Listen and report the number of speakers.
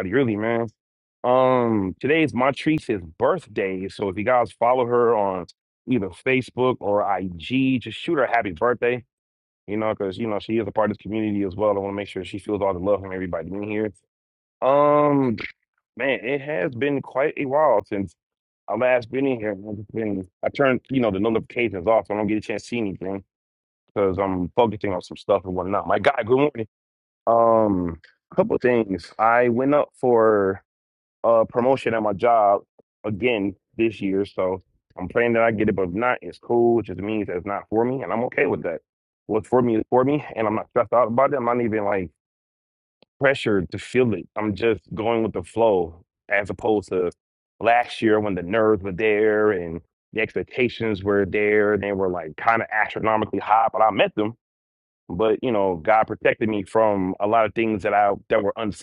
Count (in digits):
1